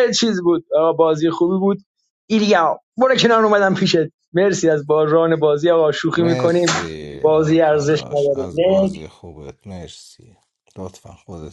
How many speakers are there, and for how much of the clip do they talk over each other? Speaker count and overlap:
2, about 18%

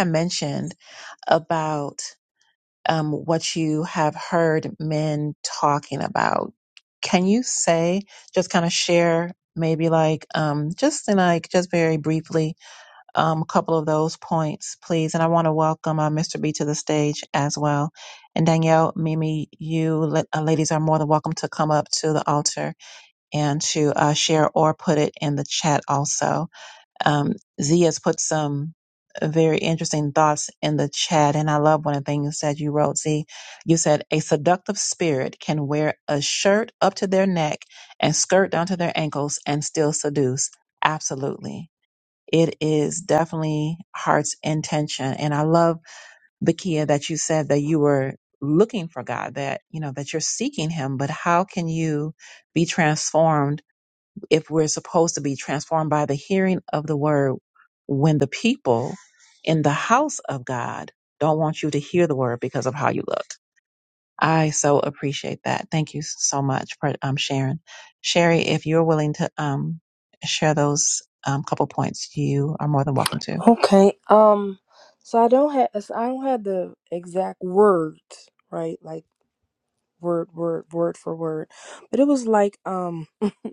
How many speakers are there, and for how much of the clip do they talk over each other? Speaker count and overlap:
2, no overlap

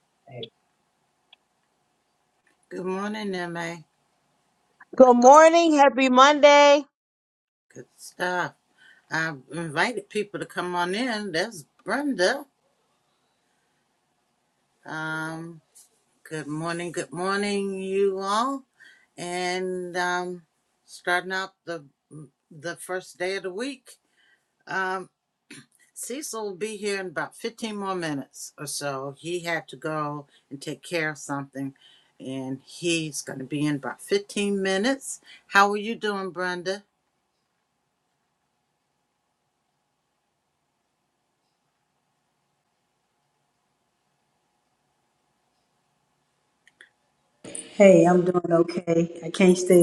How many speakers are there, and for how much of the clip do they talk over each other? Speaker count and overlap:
3, no overlap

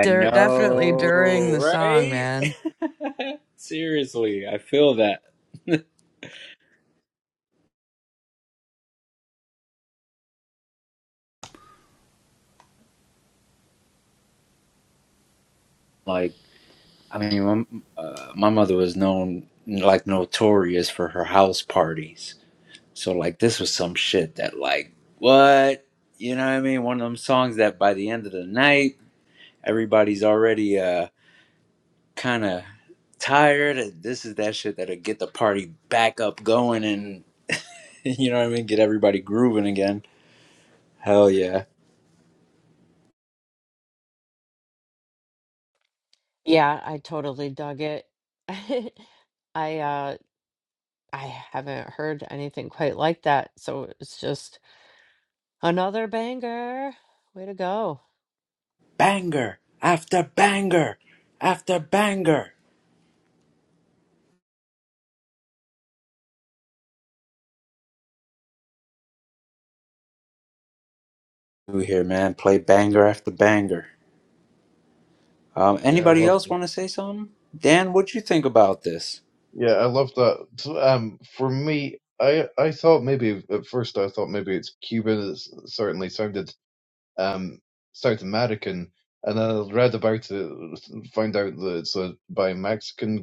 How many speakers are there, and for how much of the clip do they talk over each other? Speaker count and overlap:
4, about 3%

